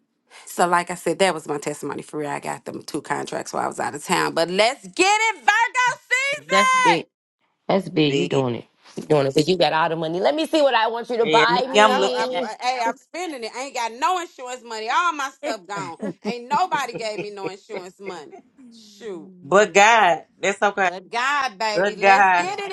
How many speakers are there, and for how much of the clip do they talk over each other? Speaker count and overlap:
three, about 13%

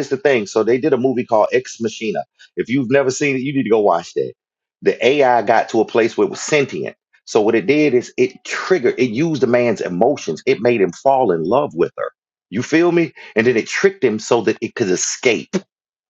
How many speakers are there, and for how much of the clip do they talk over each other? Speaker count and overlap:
one, no overlap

